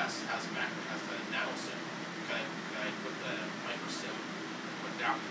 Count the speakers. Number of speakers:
one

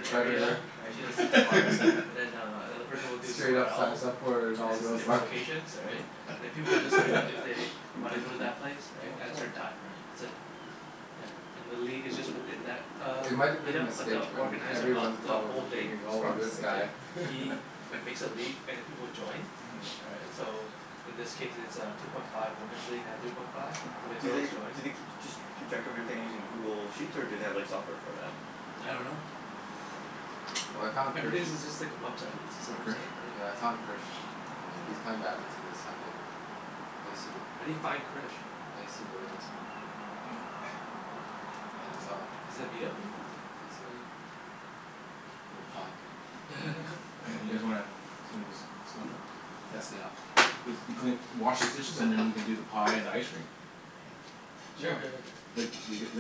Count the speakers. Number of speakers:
four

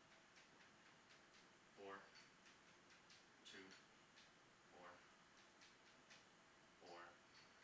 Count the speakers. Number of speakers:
one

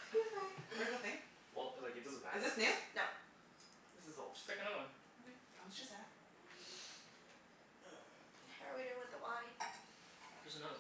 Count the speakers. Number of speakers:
four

